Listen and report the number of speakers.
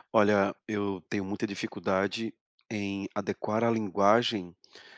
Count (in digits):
1